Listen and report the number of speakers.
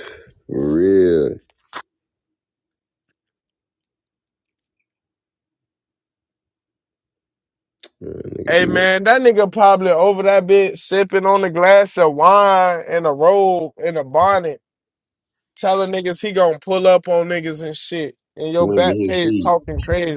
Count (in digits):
2